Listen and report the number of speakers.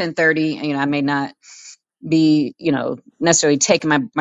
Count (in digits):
1